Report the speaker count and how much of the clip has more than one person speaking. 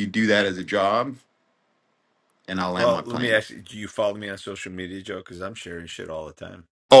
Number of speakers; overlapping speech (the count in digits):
2, about 9%